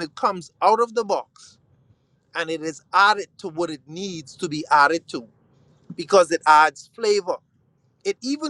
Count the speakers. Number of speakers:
1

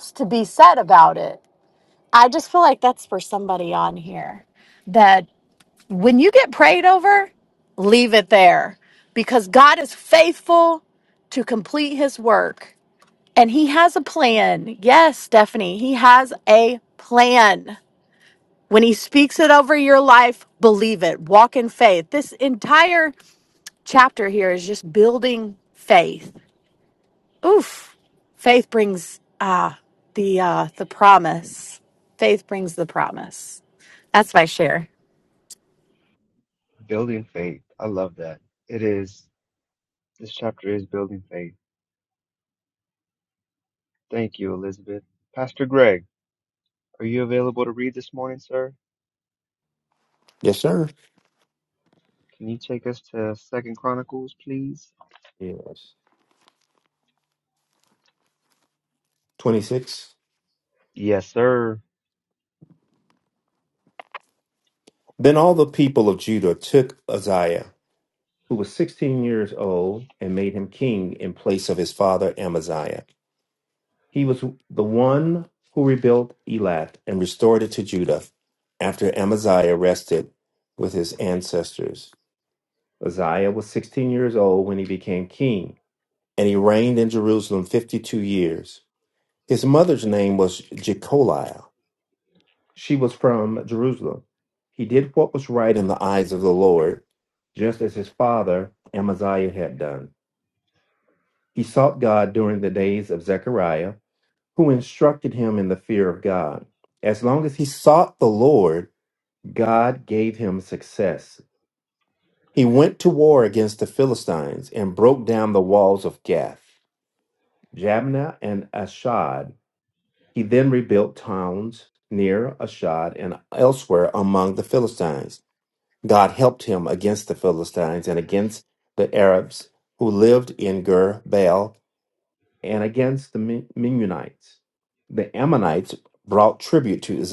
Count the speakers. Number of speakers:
3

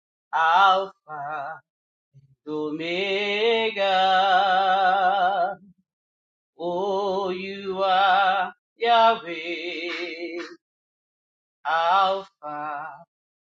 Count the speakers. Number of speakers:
1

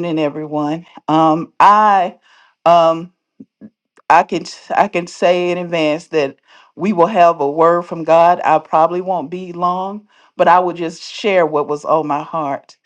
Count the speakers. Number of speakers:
1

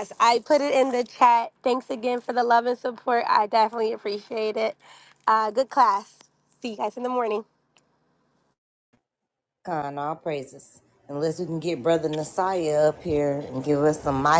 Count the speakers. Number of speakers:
2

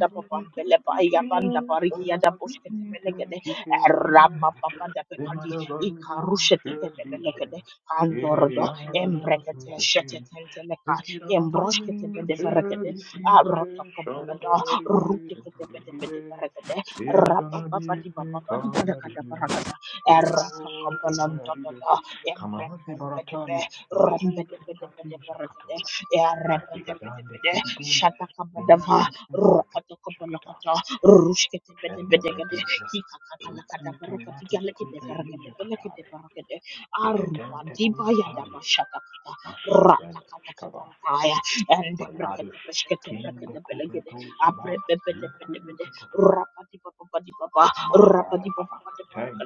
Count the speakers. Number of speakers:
2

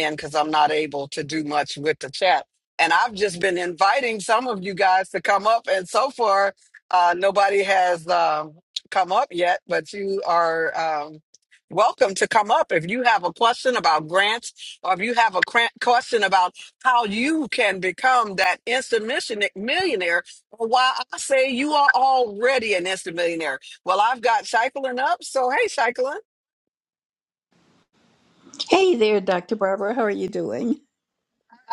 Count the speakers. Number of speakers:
2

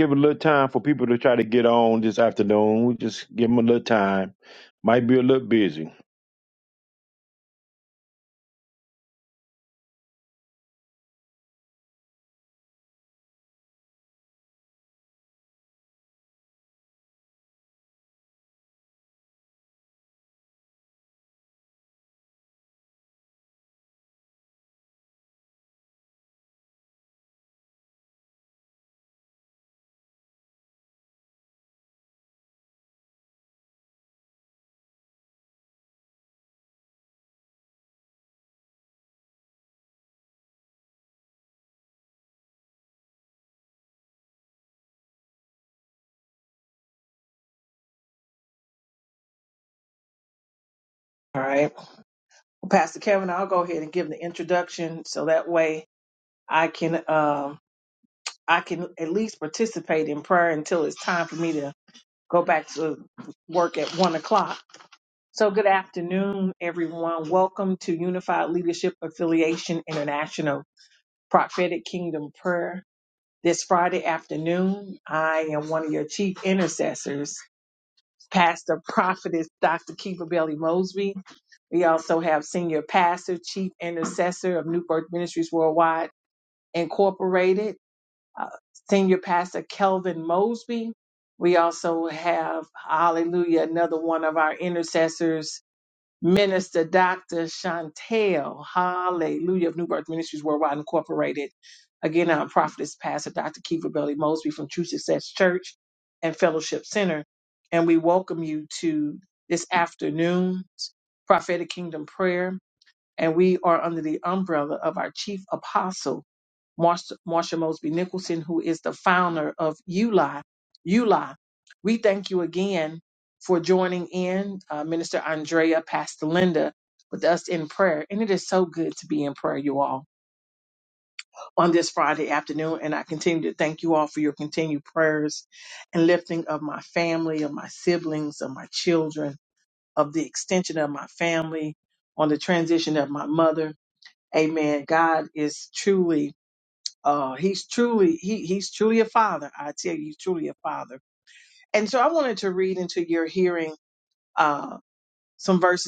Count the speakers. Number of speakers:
2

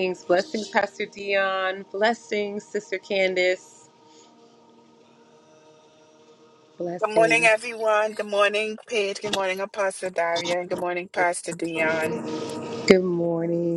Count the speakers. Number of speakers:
2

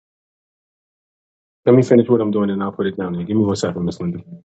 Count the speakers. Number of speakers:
1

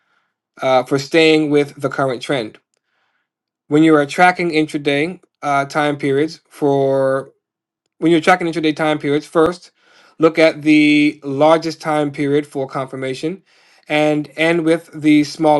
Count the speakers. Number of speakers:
1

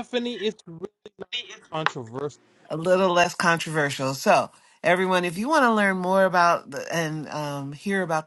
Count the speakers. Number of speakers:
2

